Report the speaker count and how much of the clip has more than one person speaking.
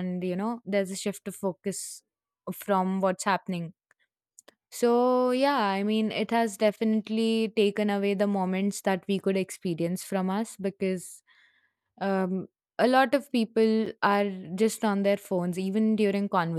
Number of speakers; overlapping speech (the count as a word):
one, no overlap